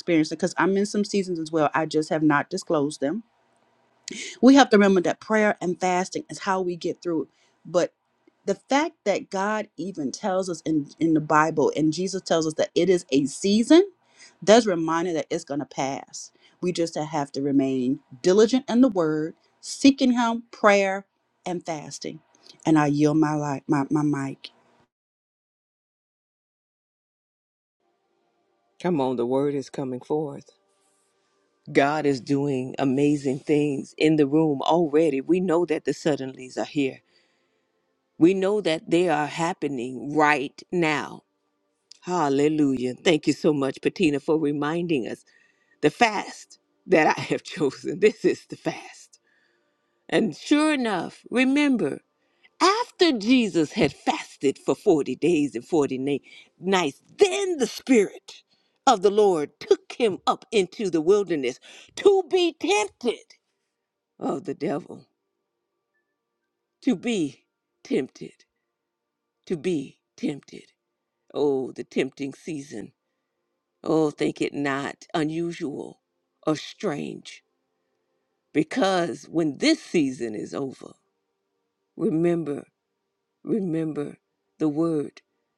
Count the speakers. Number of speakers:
two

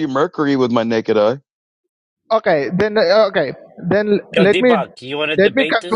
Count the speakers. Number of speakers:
three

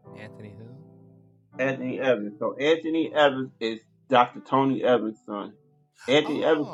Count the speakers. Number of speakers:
two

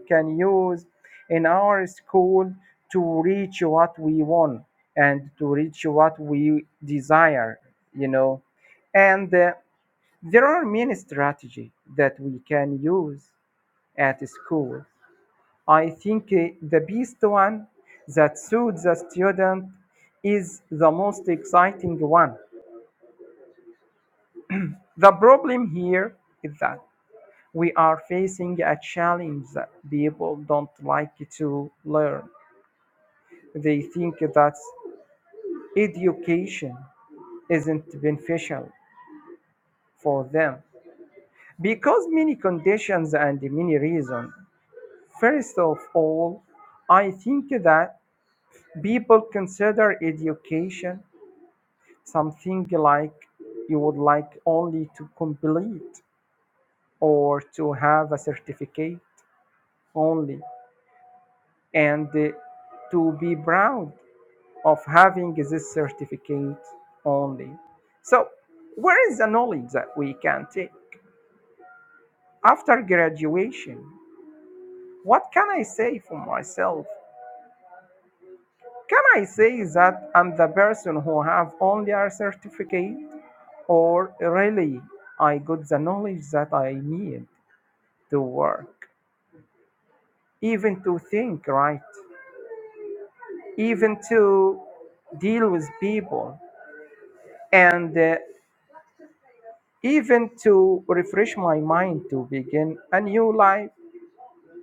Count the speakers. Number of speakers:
one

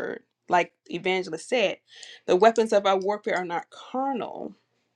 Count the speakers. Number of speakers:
one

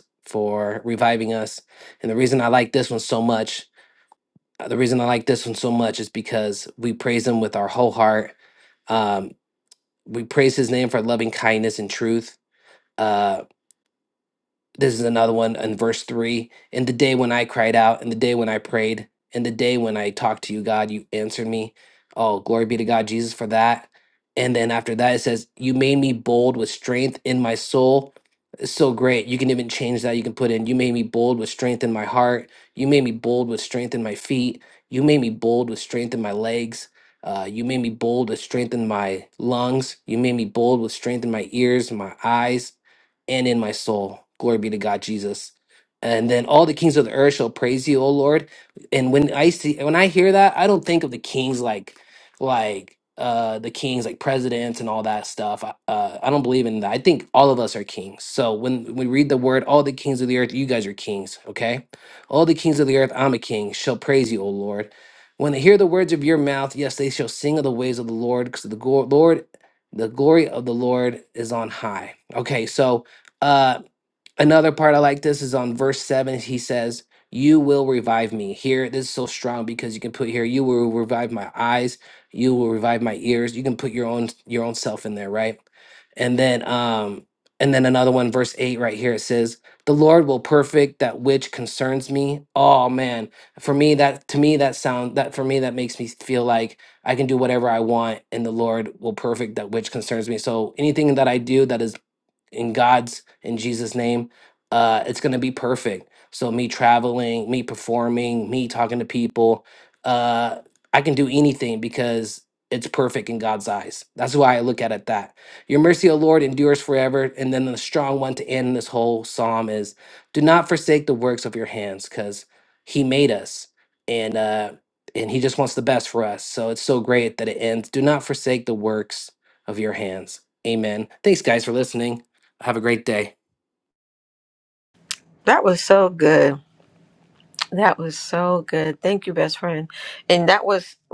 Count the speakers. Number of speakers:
two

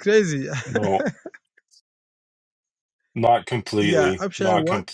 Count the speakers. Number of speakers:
two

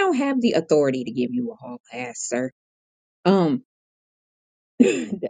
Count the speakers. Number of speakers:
one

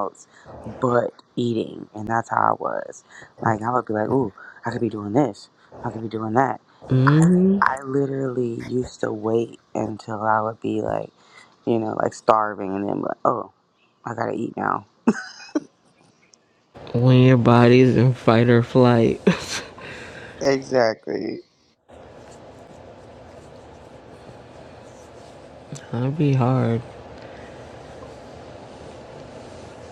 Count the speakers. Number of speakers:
two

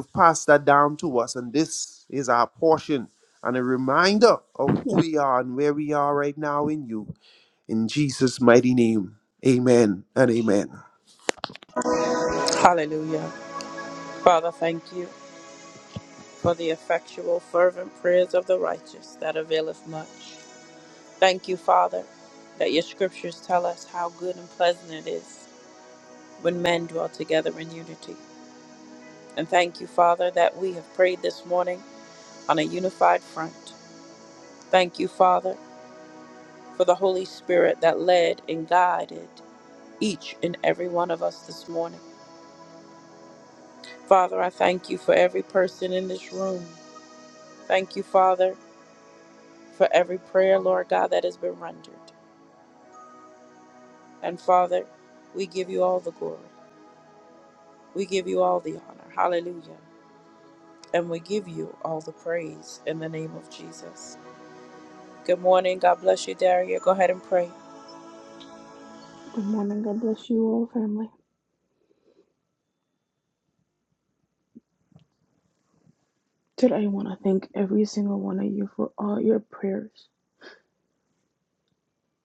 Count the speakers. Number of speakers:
three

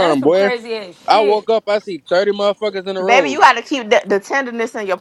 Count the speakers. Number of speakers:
three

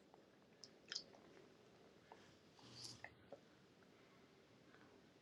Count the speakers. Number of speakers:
zero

